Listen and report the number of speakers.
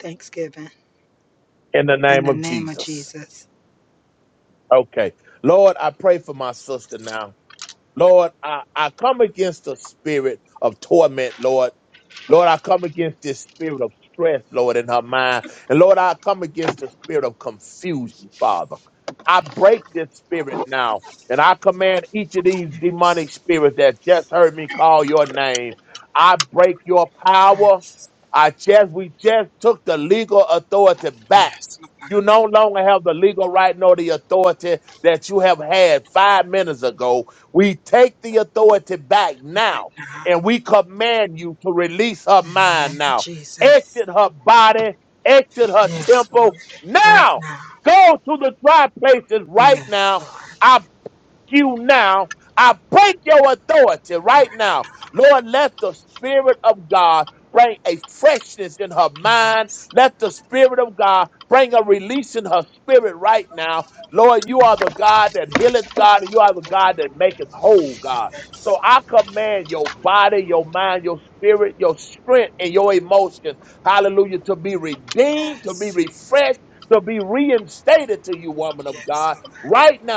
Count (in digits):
2